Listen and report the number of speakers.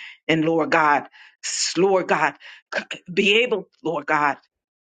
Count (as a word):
one